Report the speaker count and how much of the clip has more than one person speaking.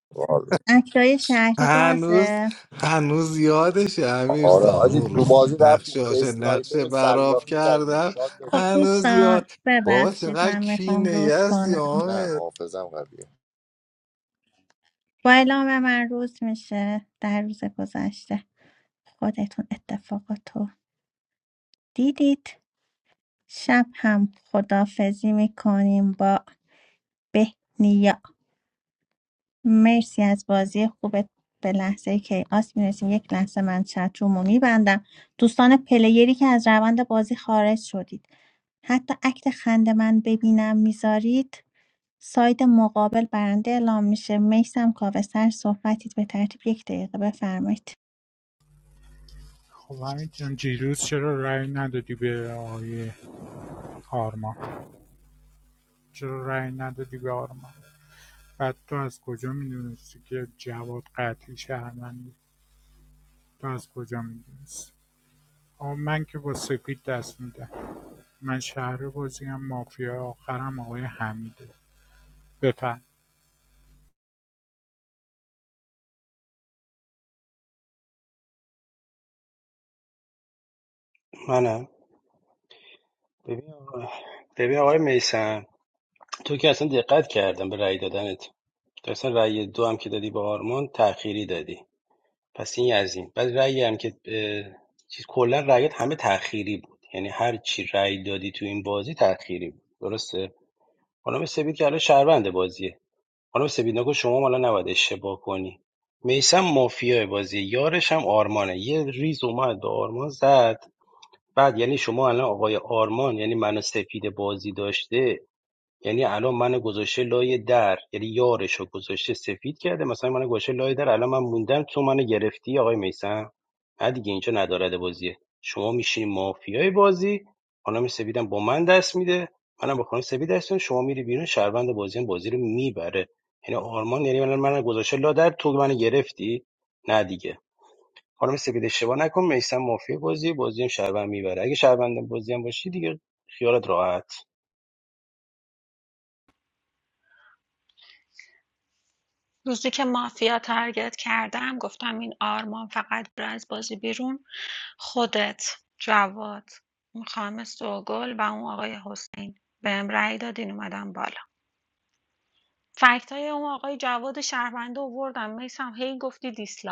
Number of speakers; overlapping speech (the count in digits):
6, about 5%